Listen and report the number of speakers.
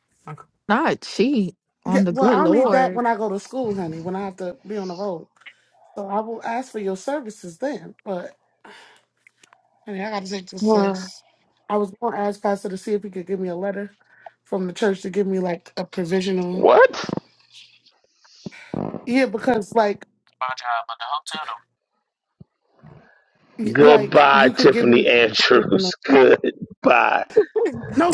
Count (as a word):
four